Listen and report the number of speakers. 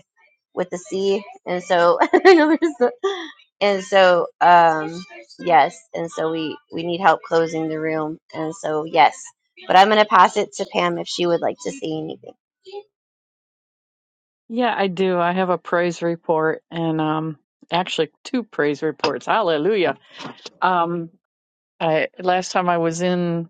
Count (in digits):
2